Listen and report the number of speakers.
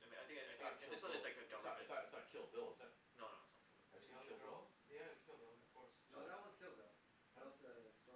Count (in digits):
4